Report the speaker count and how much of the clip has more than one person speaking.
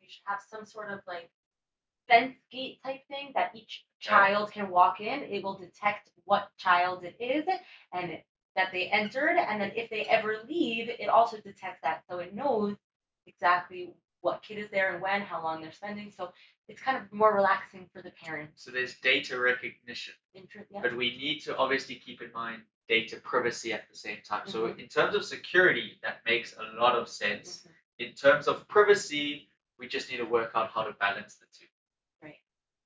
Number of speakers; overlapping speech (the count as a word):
two, about 3%